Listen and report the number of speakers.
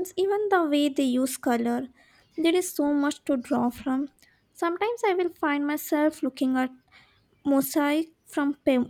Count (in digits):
1